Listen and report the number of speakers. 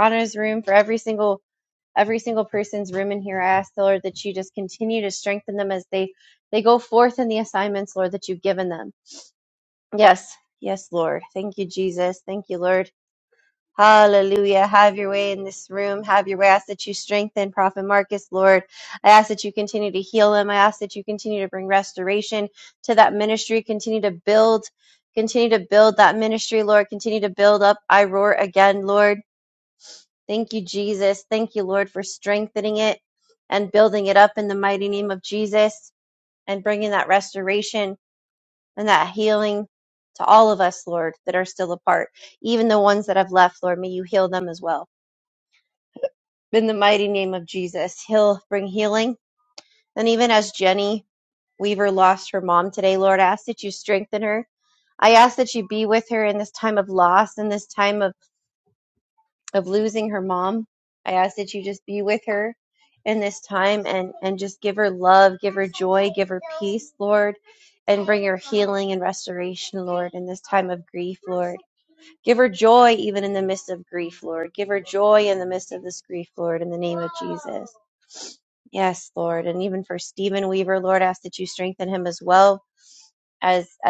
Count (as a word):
one